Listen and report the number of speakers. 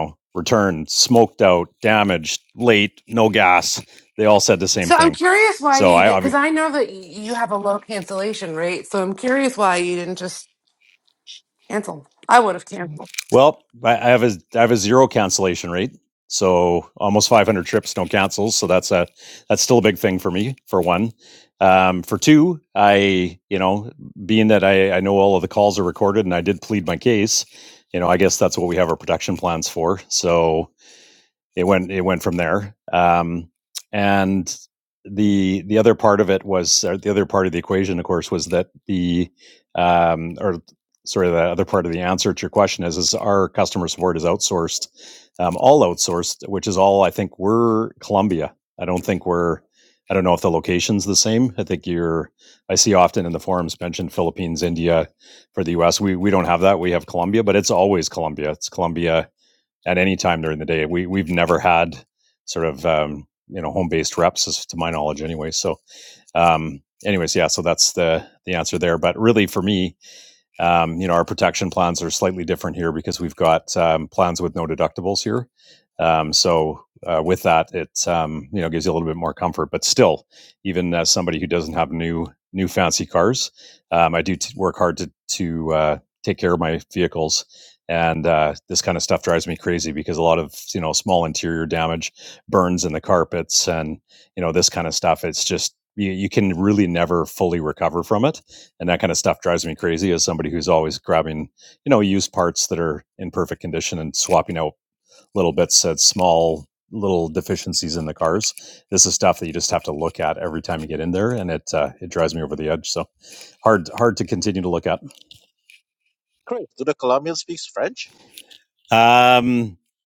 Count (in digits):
3